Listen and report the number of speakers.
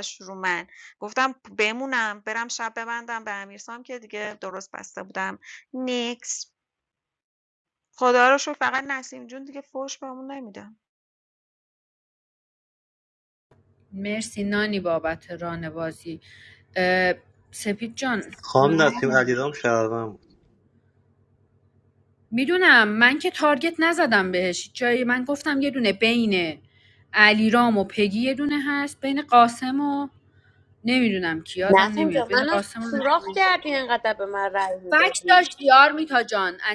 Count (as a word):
four